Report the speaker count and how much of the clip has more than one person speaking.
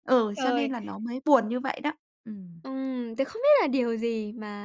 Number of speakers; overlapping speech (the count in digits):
2, about 9%